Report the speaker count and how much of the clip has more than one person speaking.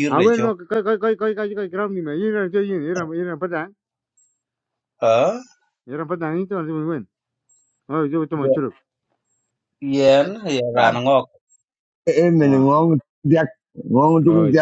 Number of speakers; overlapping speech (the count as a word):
three, about 7%